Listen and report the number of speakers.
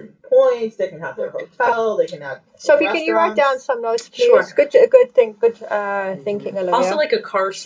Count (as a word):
three